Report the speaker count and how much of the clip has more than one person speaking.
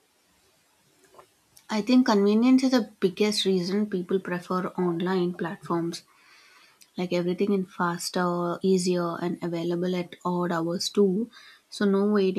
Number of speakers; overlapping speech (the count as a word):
one, no overlap